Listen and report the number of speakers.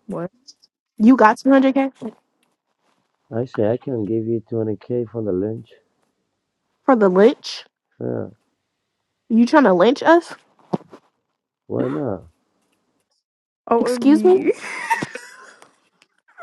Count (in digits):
3